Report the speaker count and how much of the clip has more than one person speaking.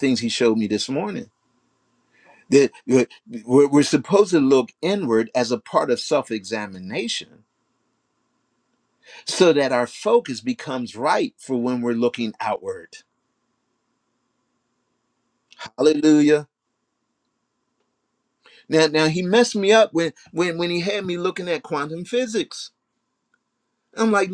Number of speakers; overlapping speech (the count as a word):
one, no overlap